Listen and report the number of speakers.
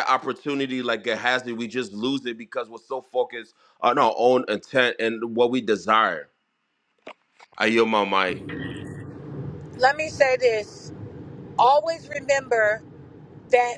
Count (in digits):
2